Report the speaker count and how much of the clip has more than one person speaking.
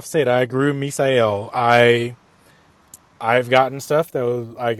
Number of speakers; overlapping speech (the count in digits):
1, no overlap